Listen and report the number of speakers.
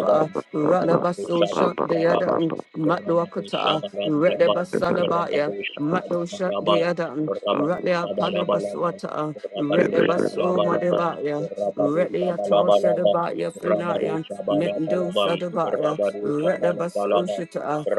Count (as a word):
two